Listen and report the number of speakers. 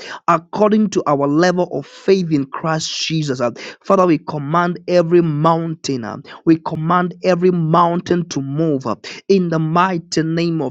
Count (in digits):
1